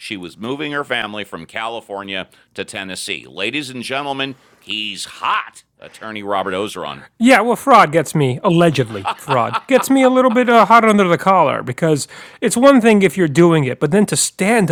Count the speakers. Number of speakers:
2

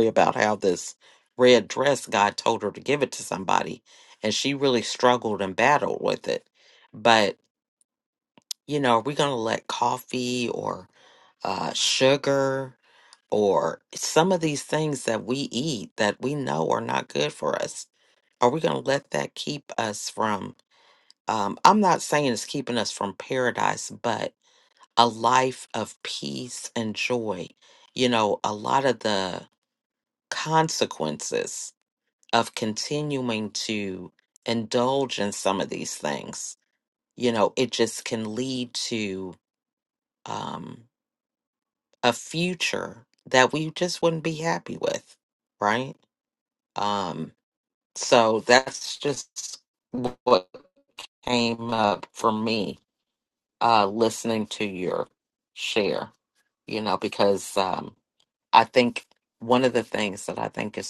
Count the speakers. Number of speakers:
1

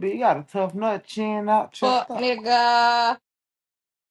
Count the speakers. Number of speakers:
2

